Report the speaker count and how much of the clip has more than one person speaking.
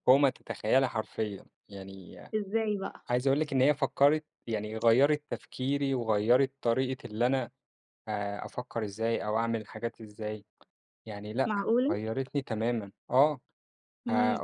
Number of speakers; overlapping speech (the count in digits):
2, about 6%